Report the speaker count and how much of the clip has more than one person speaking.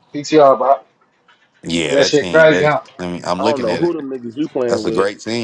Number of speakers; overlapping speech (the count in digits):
3, about 36%